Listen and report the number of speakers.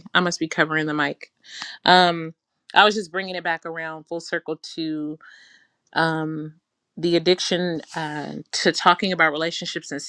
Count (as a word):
one